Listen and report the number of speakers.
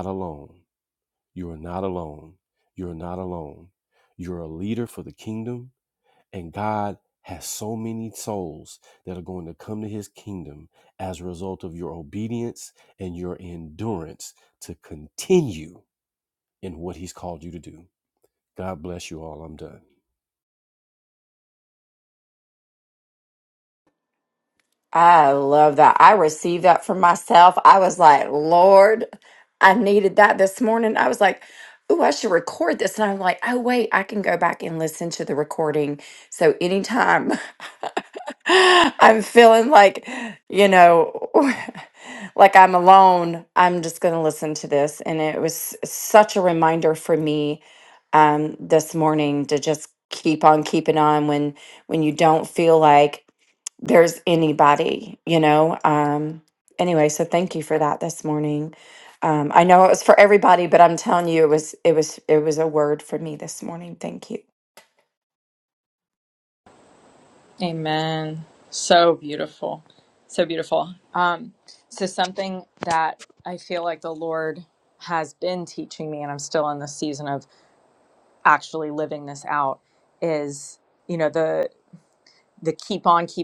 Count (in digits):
3